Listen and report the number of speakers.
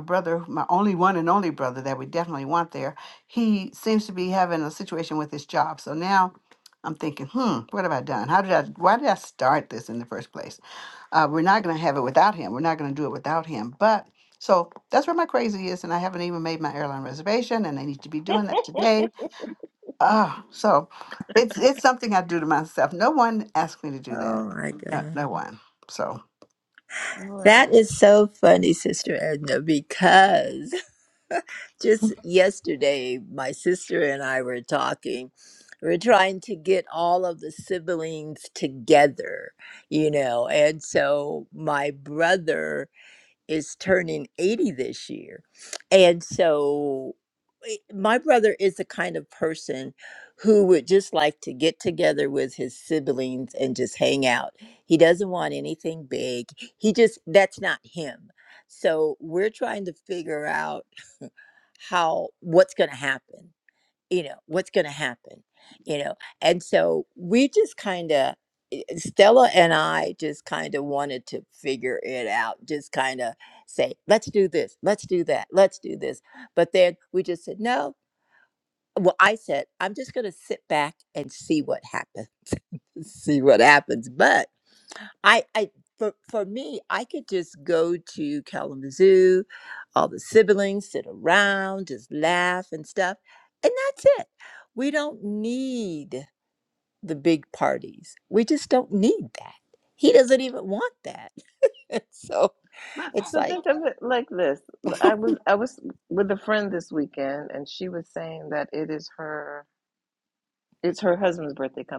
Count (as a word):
three